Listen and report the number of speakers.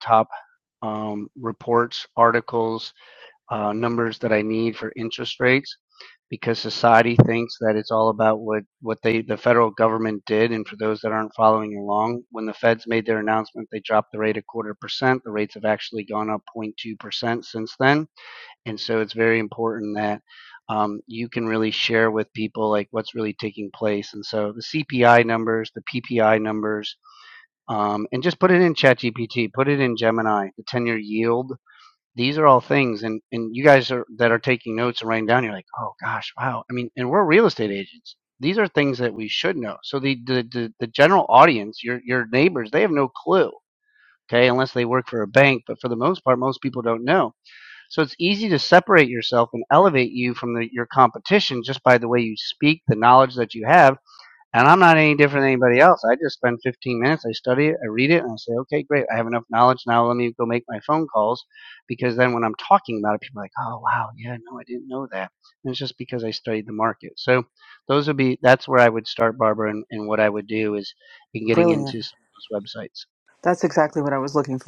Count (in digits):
2